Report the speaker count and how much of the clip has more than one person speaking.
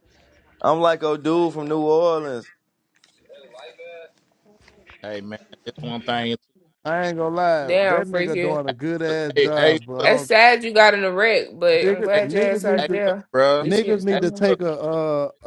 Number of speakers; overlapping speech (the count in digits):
4, about 29%